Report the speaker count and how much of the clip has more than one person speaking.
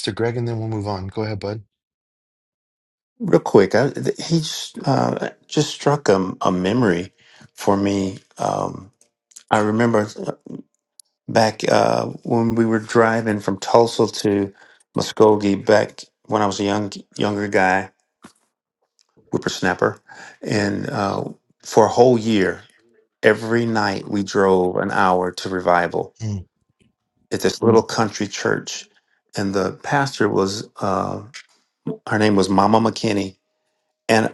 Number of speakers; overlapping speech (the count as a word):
two, no overlap